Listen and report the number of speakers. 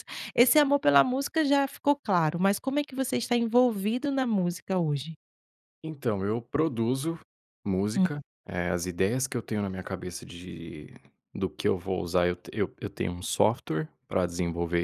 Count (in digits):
2